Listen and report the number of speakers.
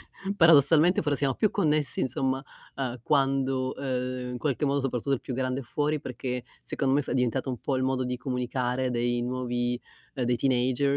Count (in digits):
1